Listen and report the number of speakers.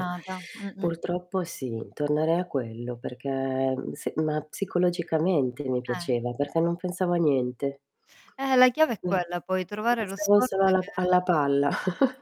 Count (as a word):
two